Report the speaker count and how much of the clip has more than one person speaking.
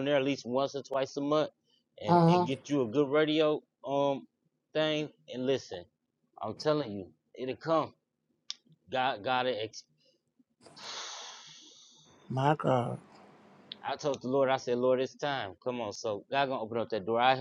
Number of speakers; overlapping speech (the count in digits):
2, about 2%